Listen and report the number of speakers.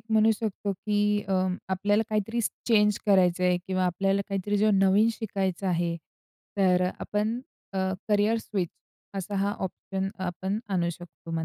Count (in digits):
1